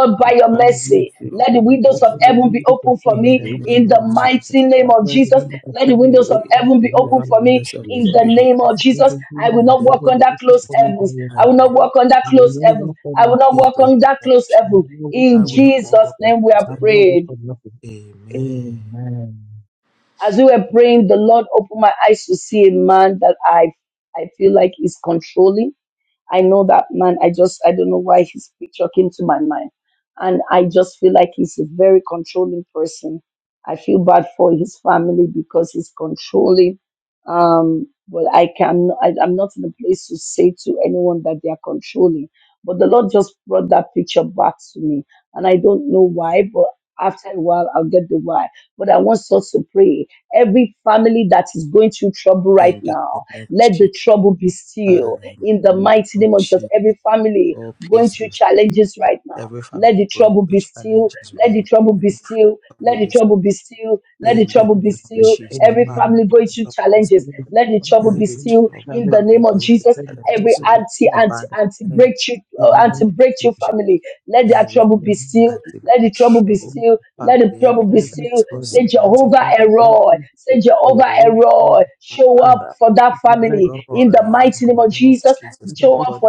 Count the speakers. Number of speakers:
3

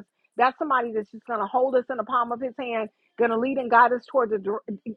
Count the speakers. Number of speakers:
1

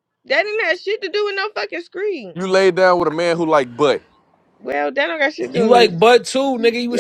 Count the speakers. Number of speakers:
3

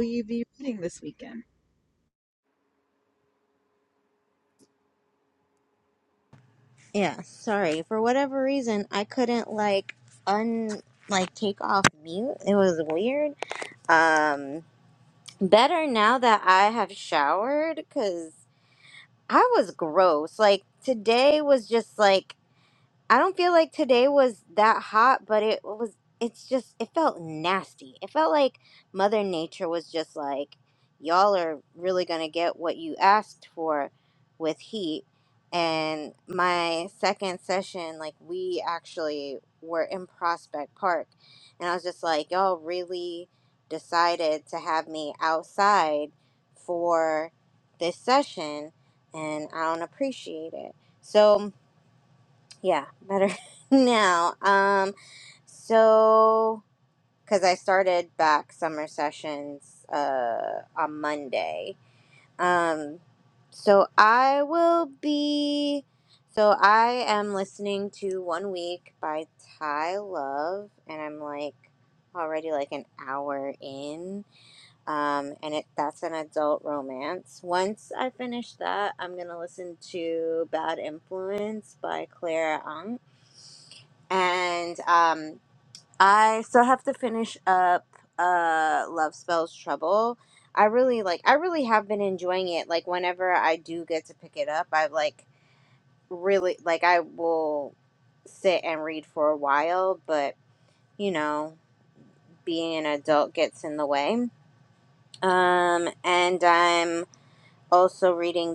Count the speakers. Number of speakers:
2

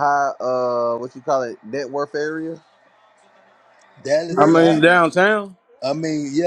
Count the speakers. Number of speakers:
3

